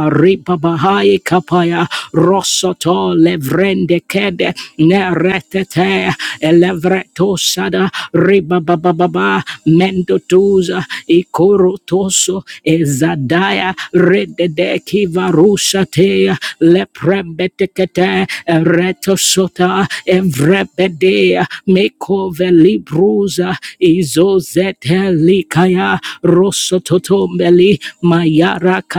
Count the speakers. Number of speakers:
1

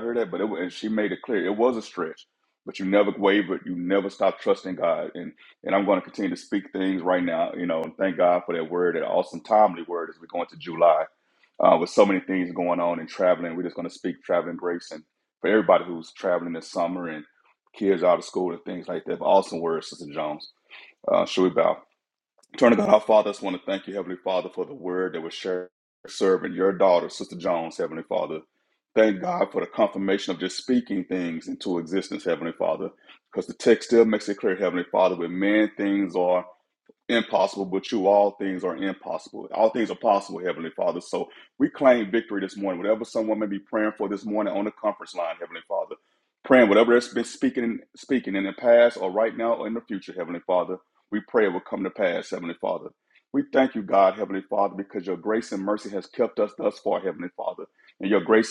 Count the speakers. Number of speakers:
1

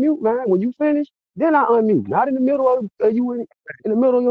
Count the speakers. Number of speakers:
1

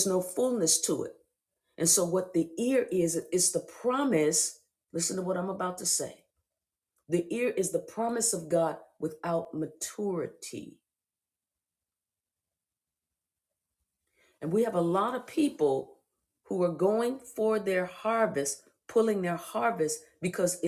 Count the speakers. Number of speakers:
1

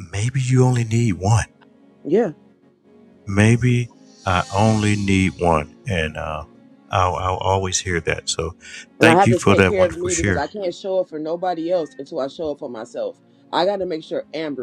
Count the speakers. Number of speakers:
2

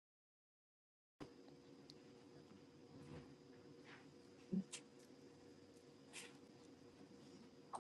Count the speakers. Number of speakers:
0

